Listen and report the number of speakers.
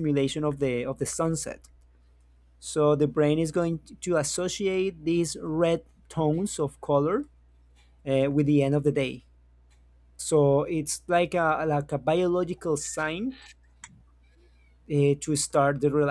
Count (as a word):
one